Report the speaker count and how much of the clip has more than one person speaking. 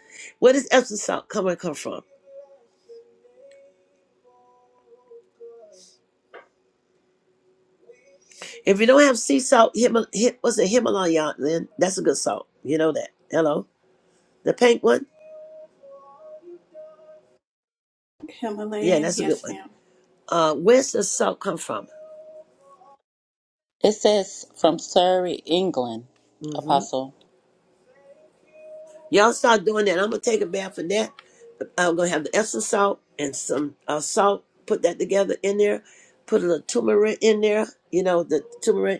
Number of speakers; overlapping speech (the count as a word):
three, about 3%